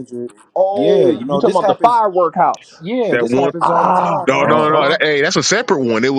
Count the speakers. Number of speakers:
3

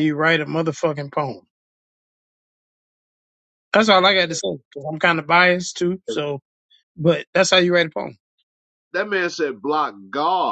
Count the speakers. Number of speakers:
2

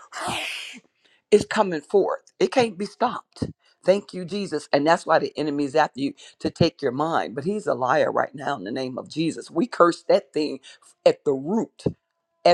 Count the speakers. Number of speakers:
1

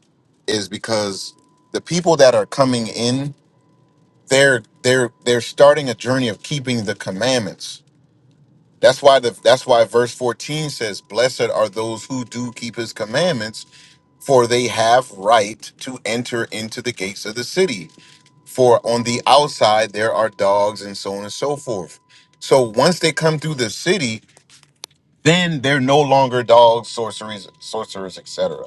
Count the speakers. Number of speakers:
1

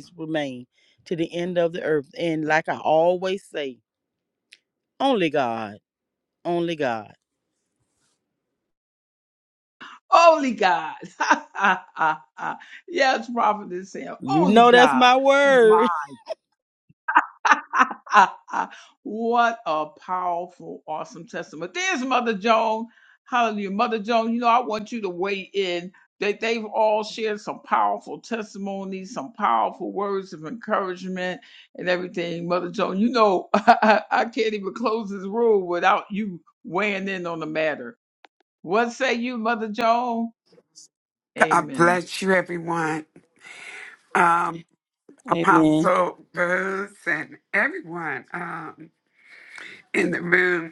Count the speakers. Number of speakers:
3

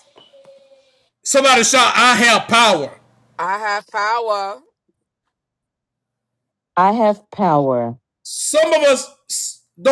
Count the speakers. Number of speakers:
3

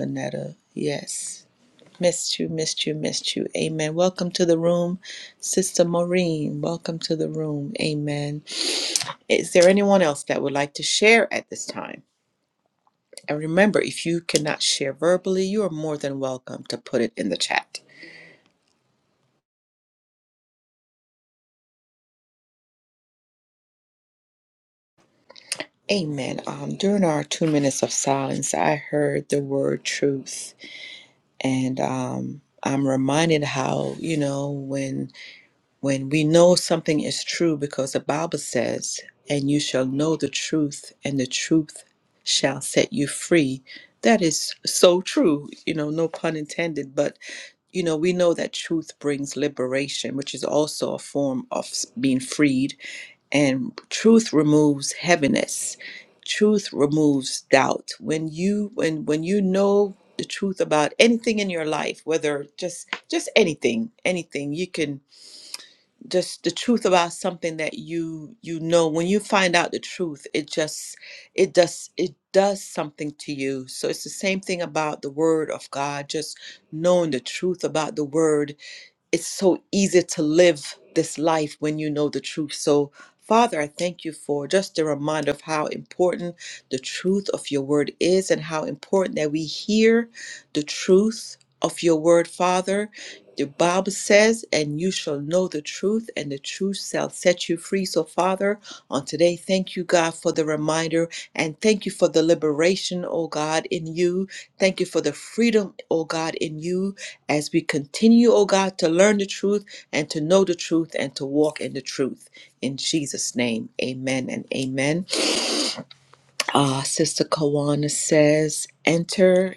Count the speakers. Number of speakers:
1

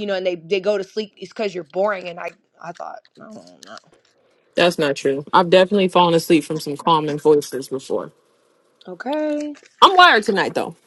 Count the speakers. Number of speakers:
2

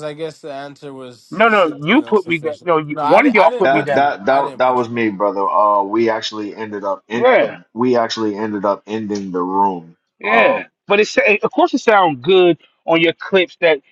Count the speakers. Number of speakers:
3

